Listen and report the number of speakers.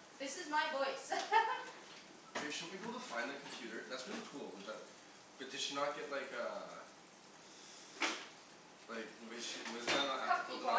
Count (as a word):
two